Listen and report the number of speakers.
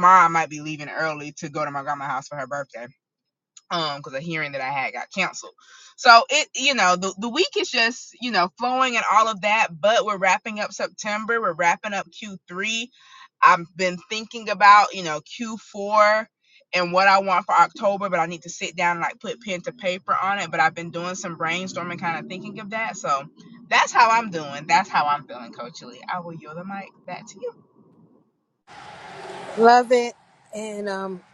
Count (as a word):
two